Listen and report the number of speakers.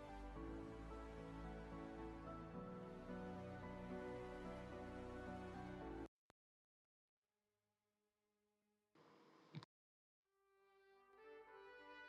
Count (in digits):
0